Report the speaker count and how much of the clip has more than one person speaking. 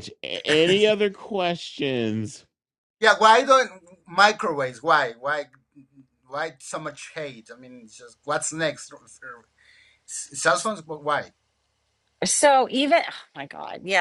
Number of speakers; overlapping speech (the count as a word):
three, no overlap